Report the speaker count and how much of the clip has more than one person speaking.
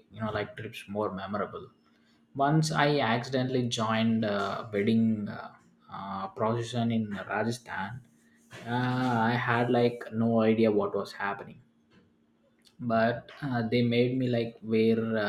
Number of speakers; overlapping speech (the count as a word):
one, no overlap